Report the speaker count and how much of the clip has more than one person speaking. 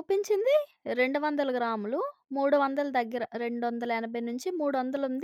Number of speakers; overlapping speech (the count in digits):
1, no overlap